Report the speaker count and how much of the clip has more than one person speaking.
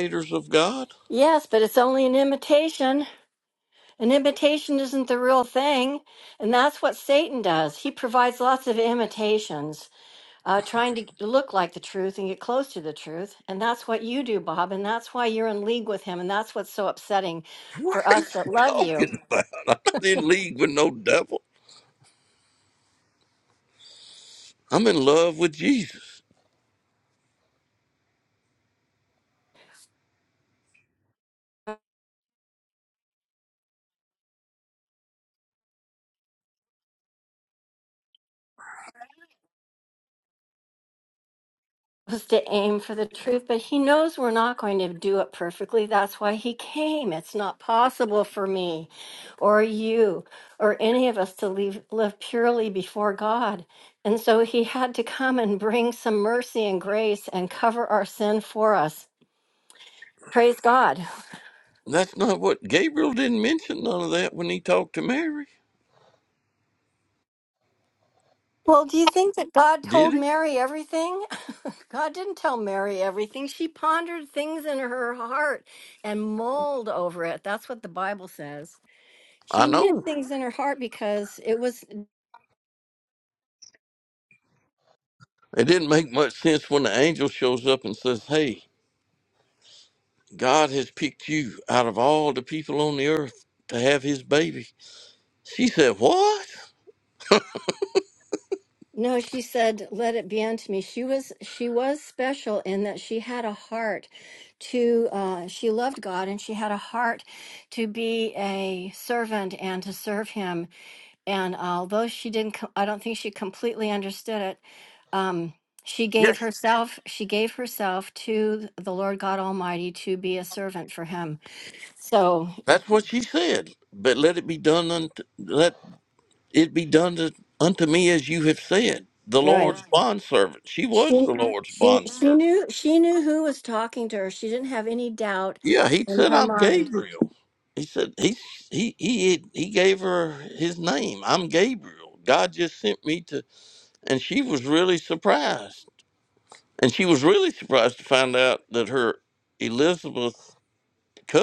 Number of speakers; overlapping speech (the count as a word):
two, about 3%